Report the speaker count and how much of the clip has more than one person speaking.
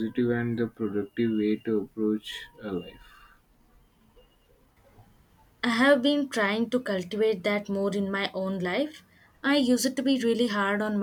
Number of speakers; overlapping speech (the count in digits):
2, no overlap